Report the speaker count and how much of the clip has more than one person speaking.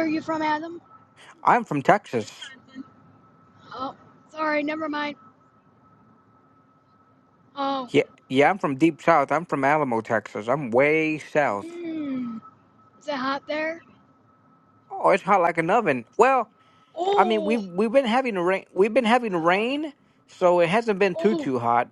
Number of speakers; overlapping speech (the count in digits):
2, about 5%